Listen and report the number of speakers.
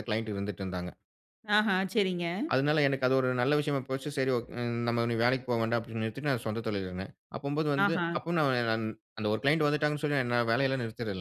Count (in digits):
2